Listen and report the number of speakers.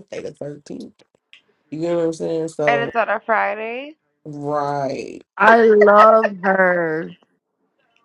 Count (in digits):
3